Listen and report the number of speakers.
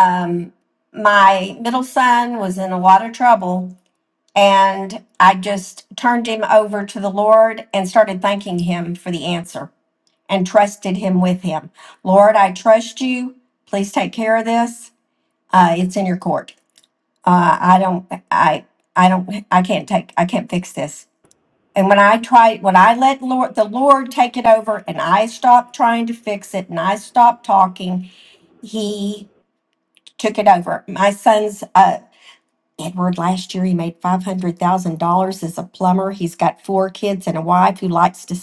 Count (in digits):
1